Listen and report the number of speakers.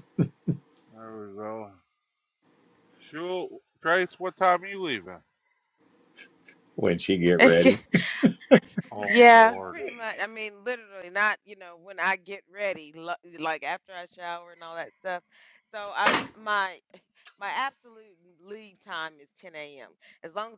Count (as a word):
three